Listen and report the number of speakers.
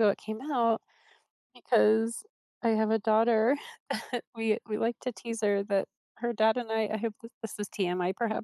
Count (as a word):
one